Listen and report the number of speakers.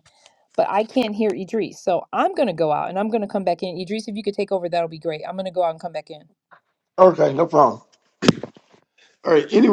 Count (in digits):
2